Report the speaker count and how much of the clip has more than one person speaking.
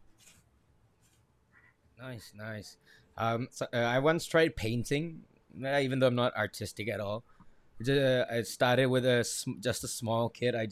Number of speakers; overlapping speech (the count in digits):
1, no overlap